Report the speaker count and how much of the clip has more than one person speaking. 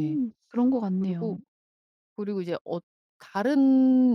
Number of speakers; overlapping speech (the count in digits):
2, about 12%